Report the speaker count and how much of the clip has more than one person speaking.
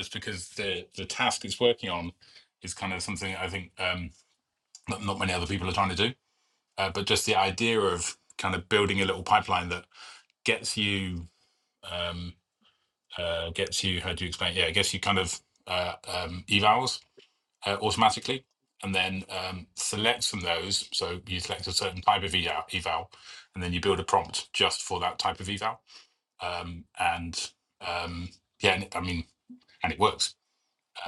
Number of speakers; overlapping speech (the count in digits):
1, no overlap